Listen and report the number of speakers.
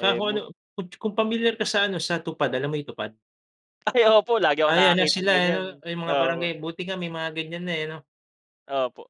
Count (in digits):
2